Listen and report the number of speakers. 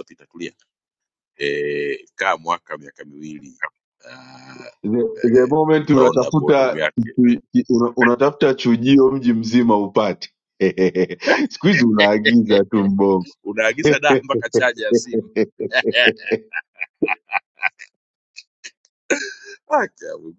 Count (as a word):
two